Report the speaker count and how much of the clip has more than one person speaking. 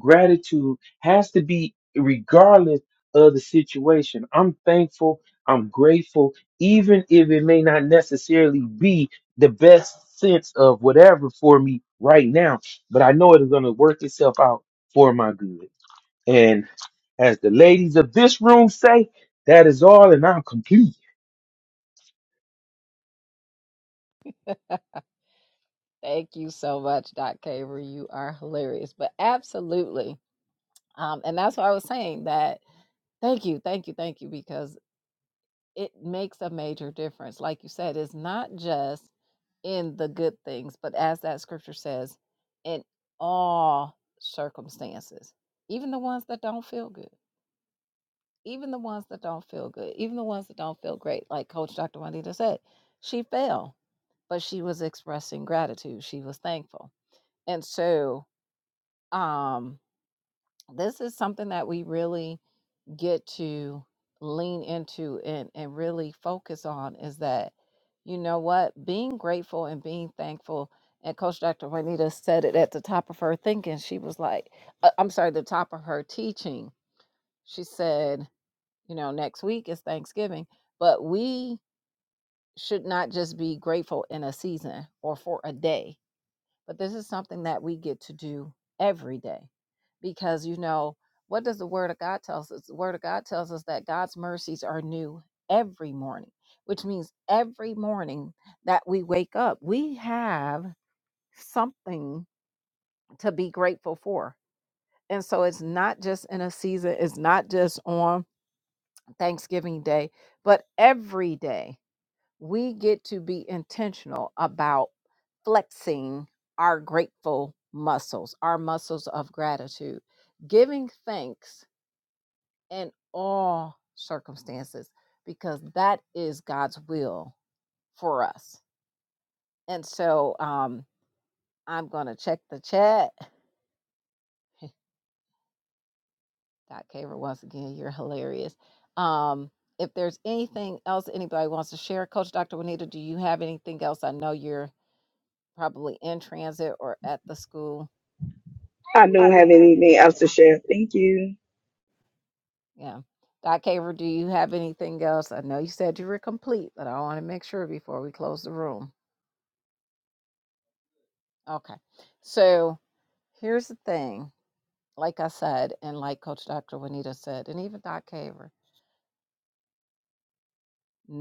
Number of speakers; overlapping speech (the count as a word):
three, no overlap